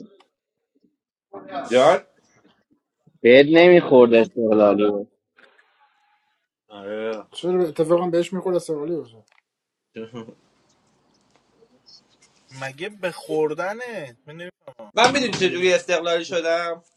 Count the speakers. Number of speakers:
4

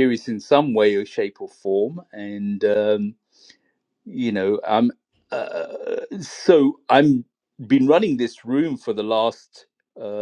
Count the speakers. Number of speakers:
1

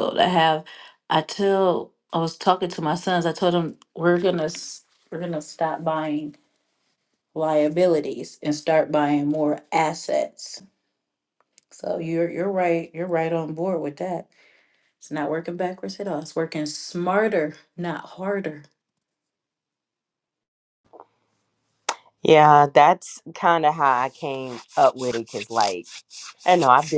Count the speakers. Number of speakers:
2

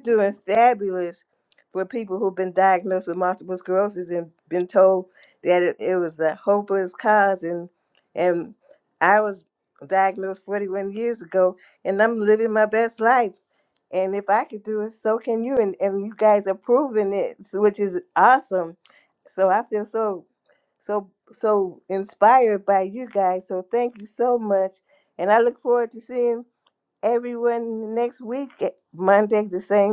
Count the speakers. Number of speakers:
1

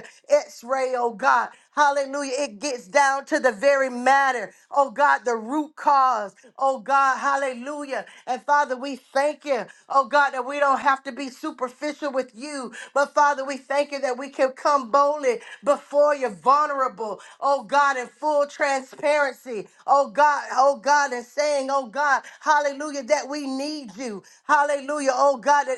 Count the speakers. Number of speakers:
1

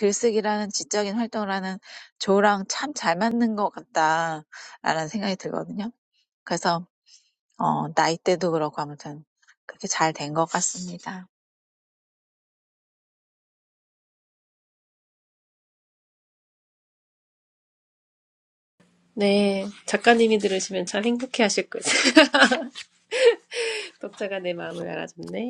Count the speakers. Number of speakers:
2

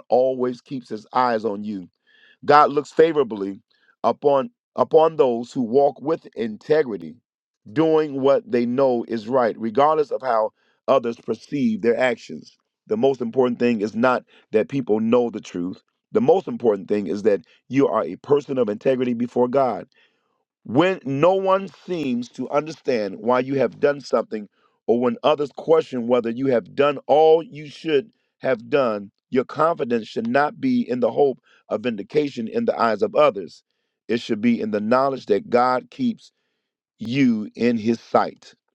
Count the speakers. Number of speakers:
1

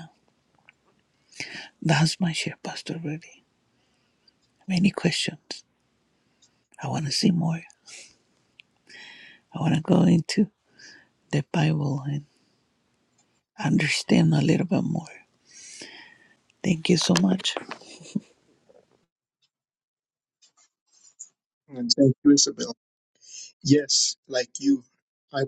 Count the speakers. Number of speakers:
2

